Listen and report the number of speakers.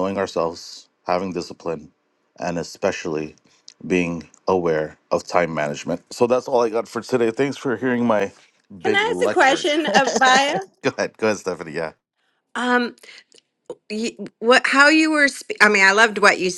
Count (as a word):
two